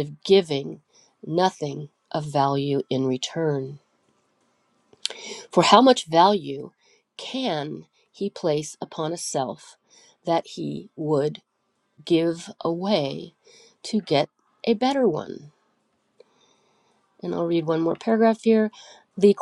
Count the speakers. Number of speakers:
one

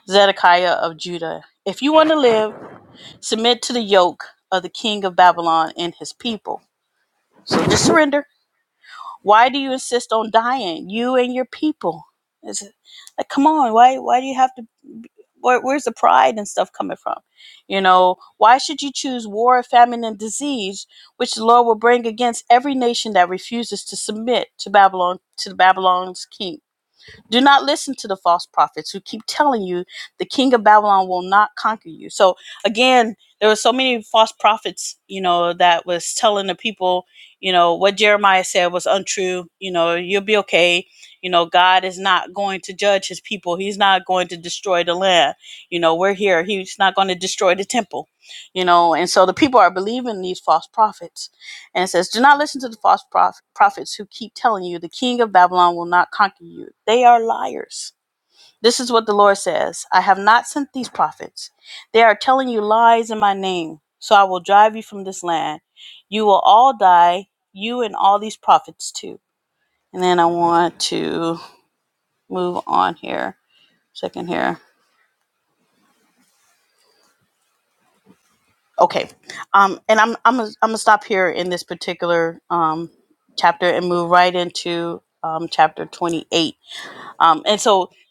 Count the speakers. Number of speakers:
one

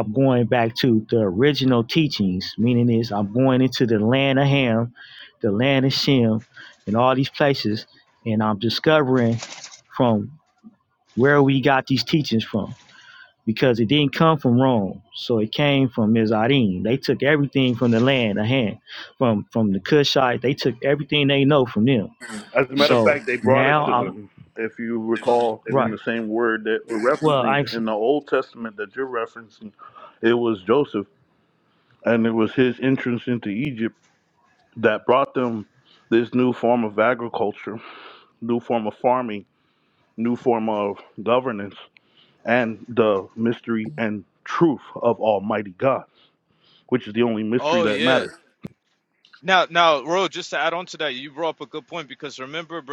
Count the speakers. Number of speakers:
three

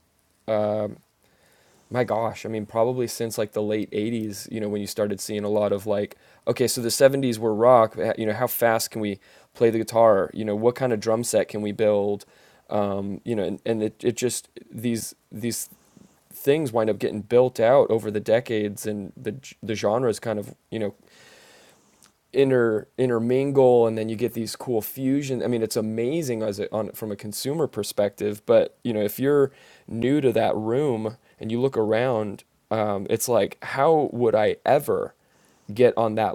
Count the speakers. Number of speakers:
one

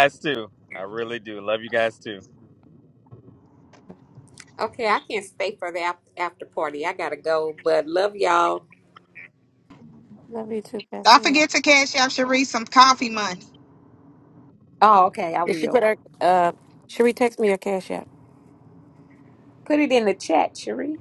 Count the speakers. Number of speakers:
four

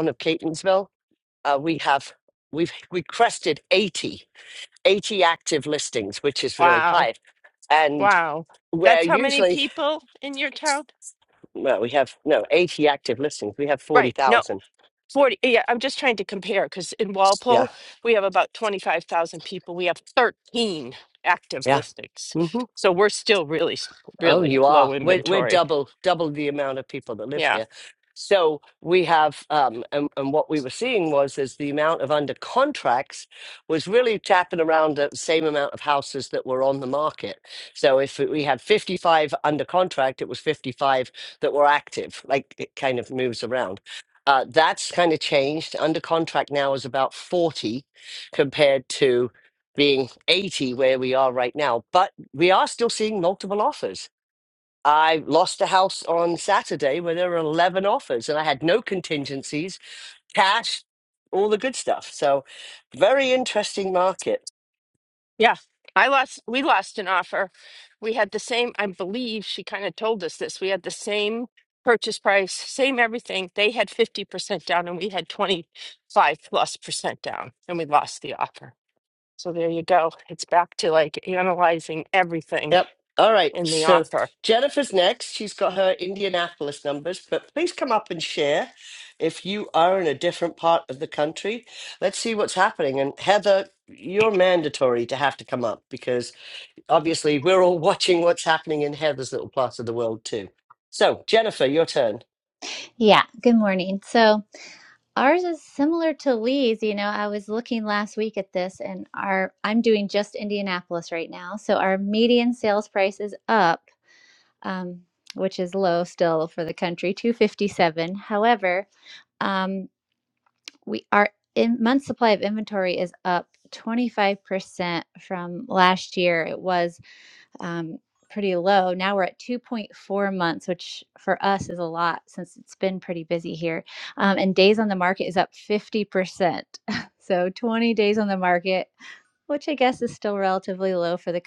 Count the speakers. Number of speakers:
three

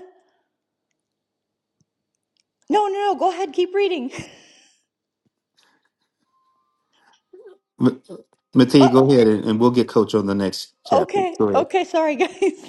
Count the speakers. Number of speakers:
two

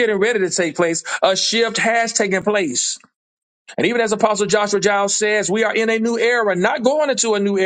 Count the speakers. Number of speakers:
one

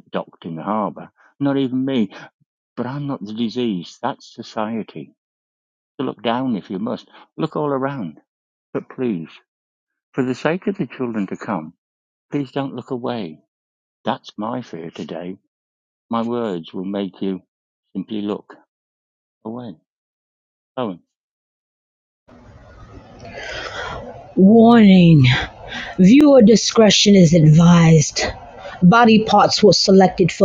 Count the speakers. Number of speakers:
two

